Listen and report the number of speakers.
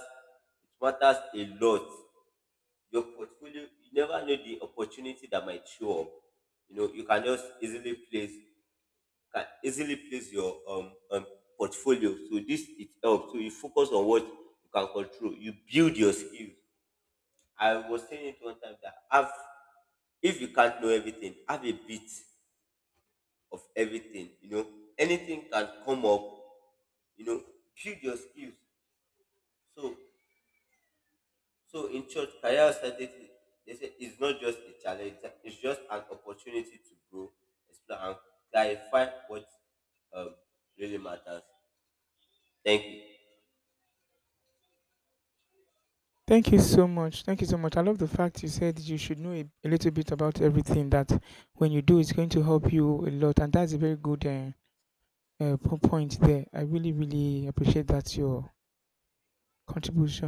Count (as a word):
two